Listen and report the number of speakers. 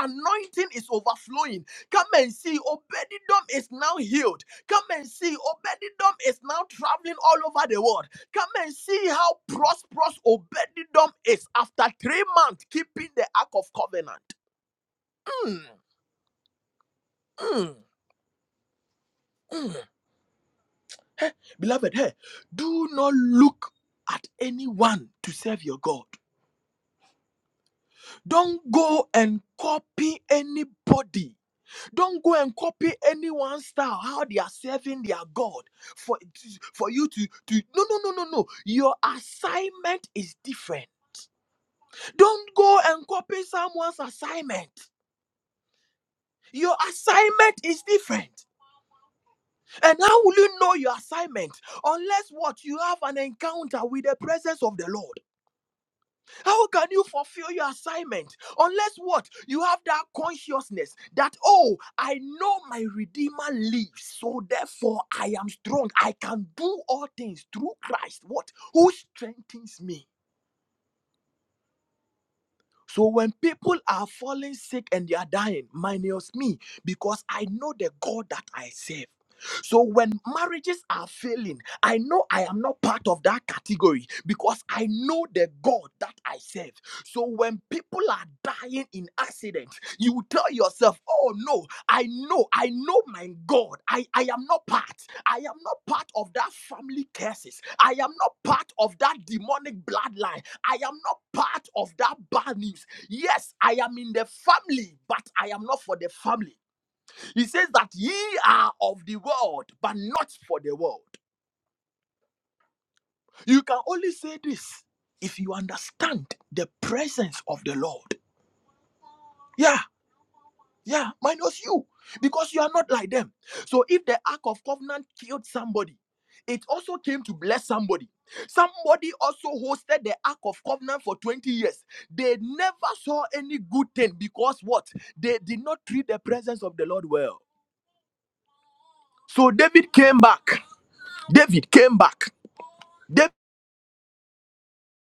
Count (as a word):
one